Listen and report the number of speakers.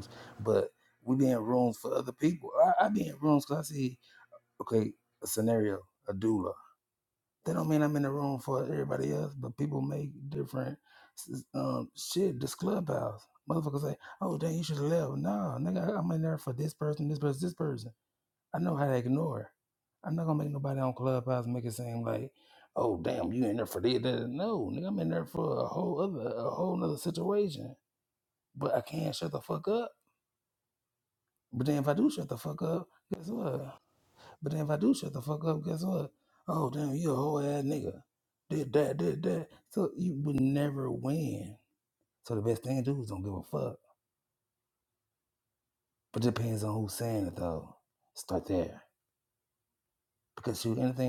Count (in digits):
1